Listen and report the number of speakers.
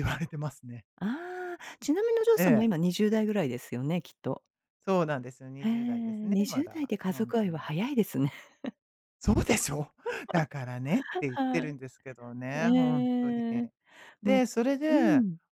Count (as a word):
two